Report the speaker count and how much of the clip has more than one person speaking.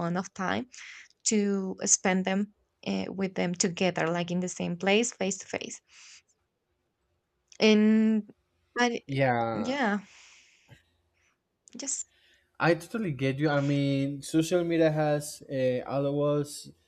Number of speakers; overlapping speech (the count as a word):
two, about 1%